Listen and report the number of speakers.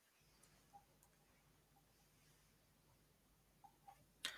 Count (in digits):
0